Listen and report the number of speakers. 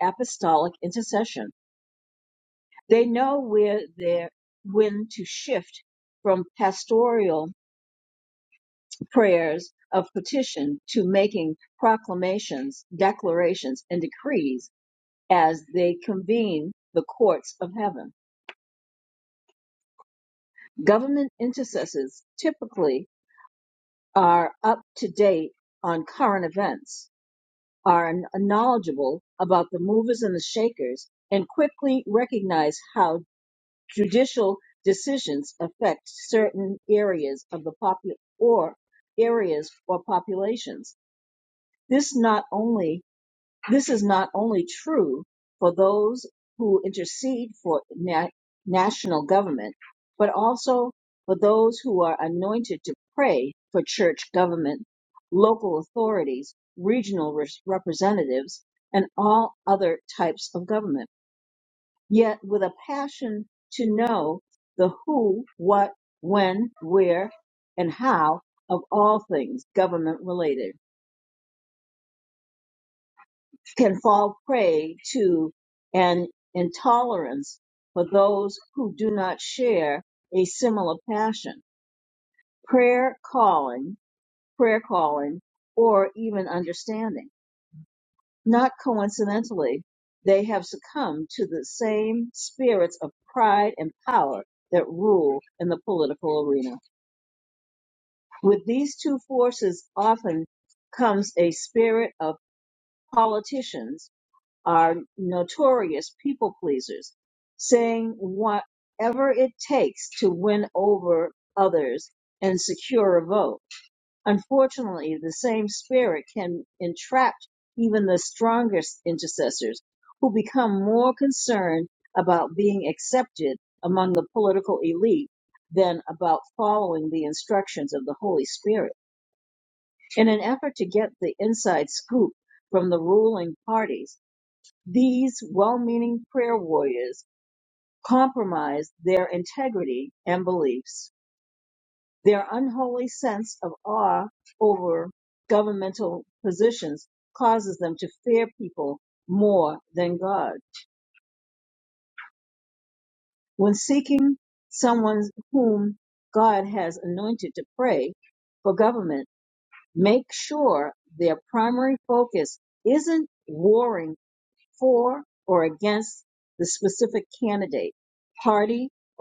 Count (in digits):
1